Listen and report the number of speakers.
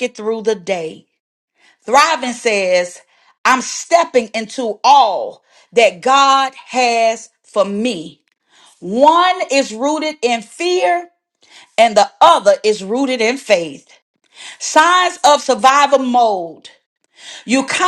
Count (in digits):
1